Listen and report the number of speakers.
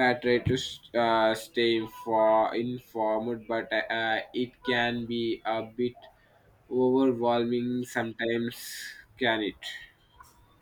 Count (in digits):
1